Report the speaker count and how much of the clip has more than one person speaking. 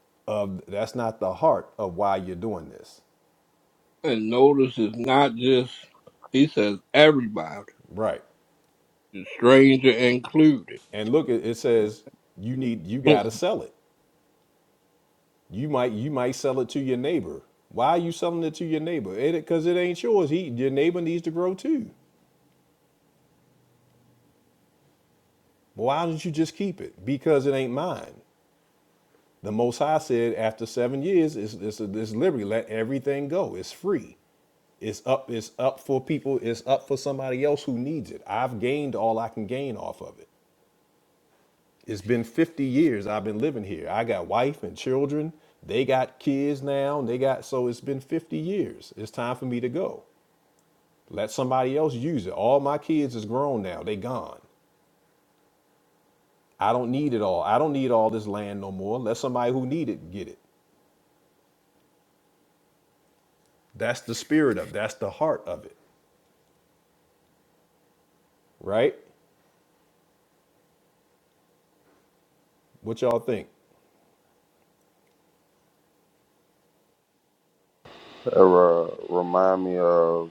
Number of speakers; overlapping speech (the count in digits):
3, under 1%